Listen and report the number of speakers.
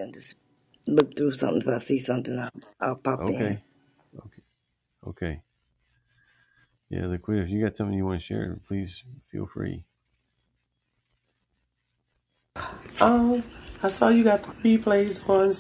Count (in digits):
3